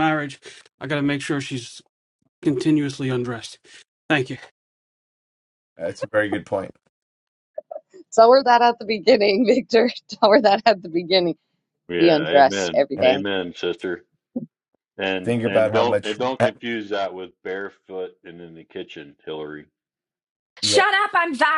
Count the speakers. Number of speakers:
five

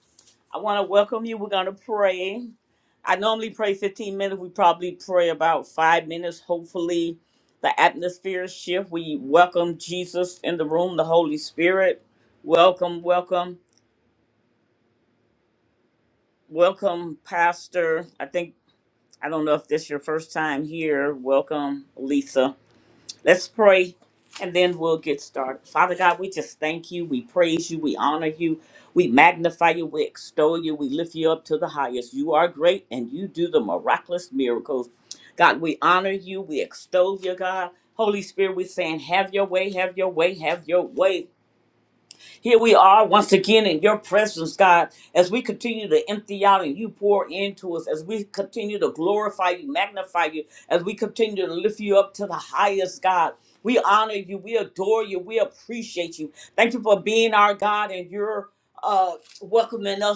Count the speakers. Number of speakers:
one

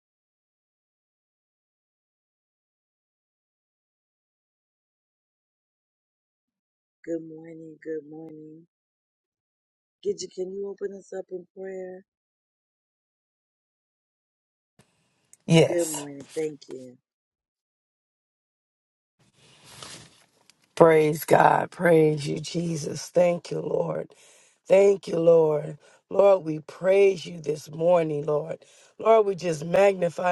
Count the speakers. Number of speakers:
two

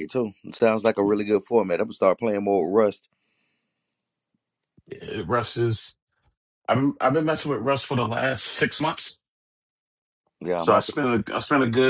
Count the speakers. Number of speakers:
two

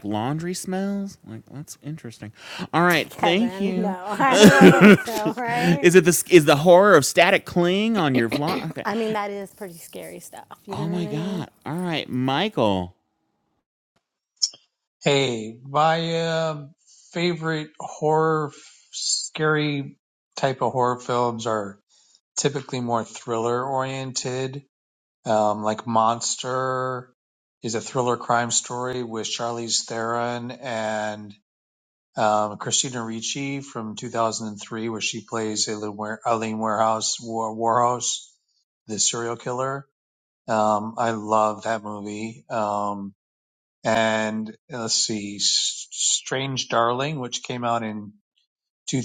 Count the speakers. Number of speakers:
three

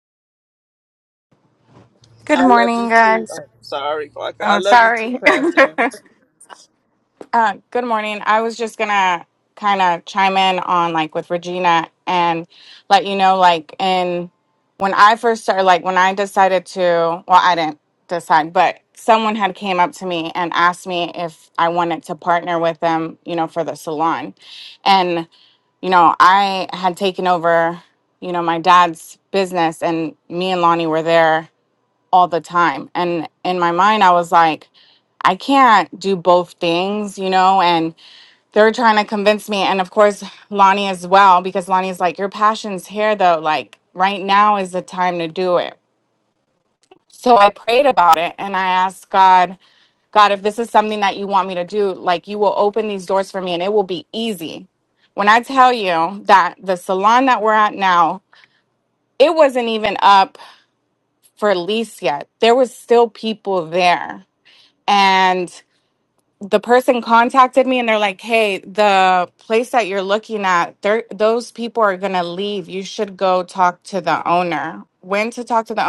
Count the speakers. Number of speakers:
two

